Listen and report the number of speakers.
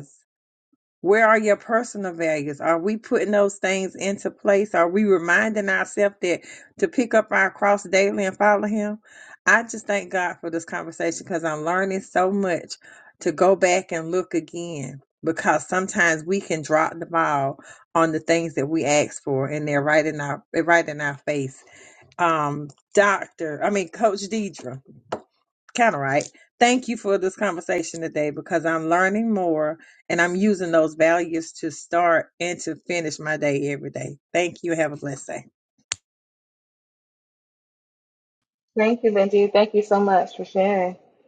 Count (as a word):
two